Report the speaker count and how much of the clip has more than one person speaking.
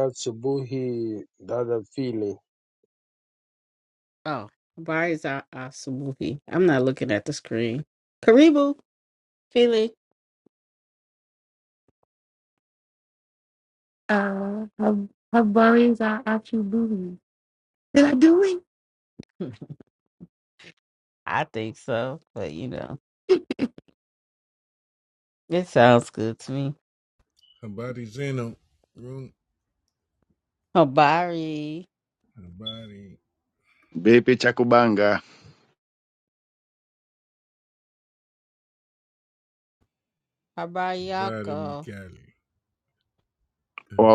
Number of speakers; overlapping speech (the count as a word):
five, about 1%